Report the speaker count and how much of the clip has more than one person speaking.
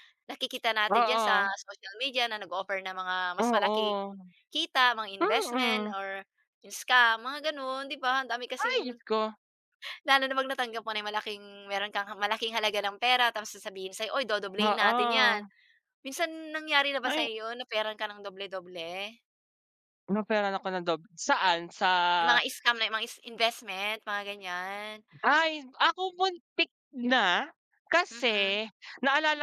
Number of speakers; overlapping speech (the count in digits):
2, about 13%